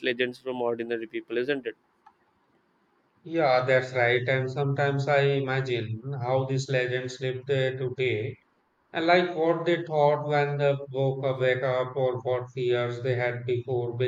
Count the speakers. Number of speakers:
2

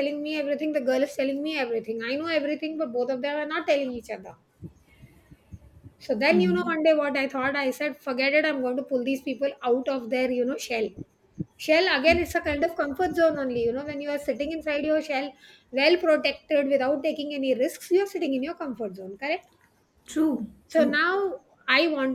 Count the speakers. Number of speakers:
2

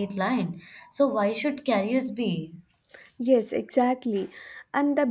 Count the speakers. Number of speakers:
2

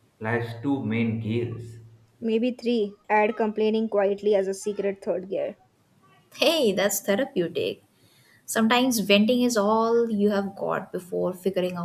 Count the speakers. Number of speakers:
3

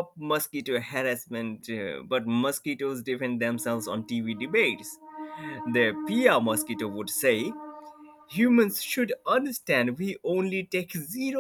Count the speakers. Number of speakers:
1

